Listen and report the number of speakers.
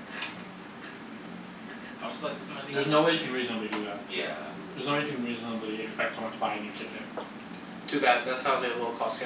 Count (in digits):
3